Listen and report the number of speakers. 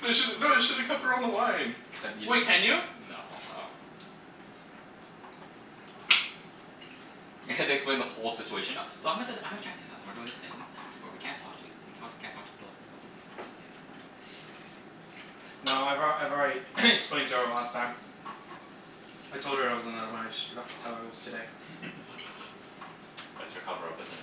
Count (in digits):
3